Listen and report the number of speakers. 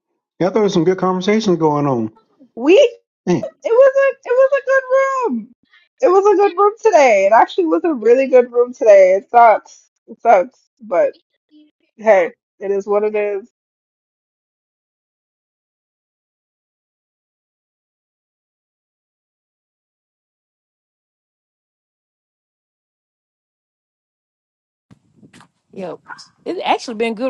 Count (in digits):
3